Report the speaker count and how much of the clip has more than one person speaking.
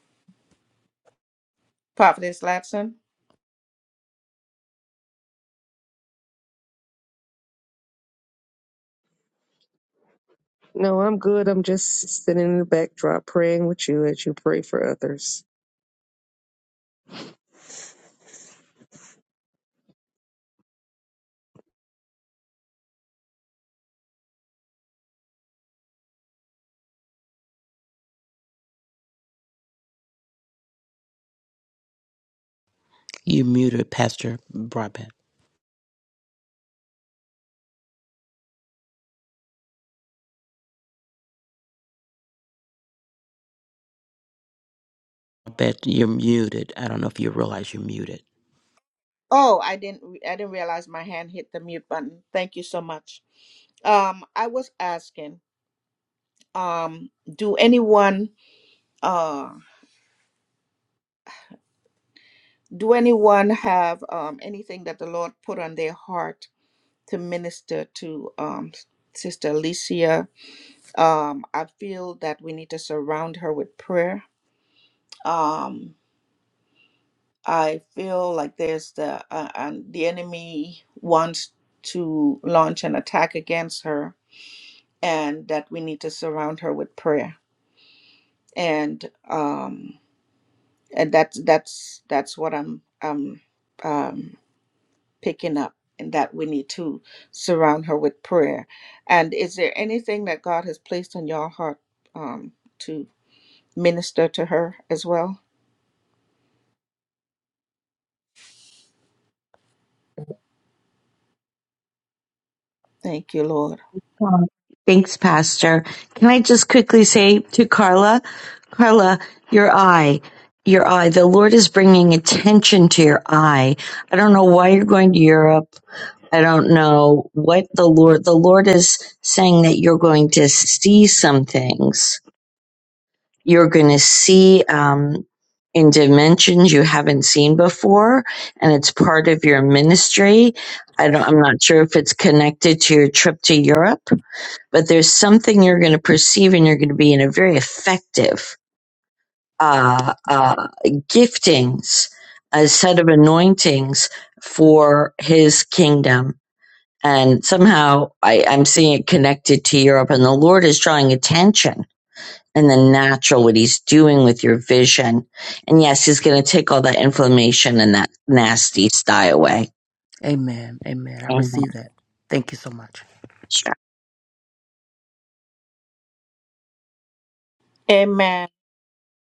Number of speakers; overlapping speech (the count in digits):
4, under 1%